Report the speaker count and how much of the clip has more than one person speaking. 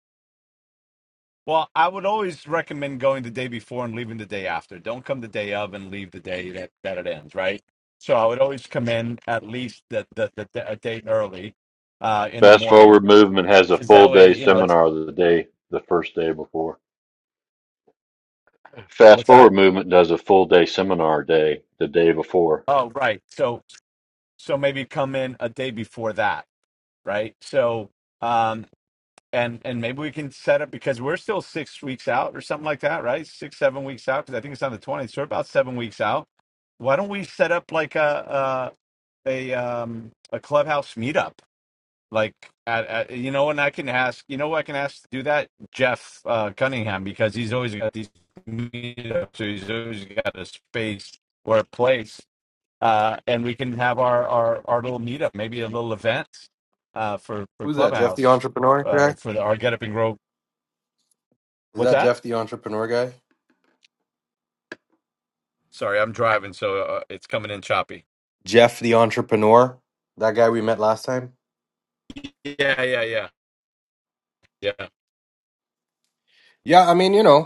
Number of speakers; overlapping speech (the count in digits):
3, about 4%